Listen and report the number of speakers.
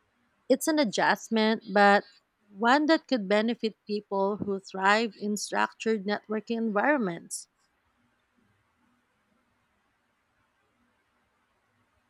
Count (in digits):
1